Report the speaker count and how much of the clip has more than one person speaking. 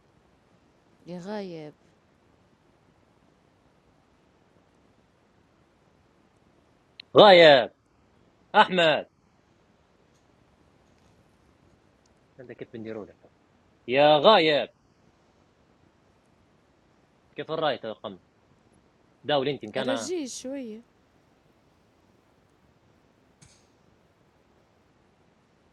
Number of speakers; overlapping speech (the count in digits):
2, about 1%